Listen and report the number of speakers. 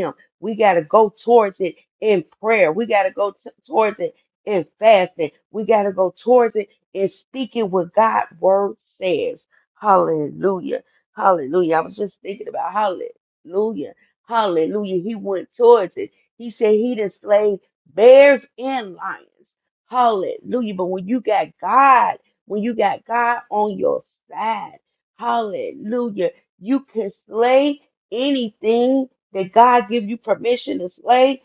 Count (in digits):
1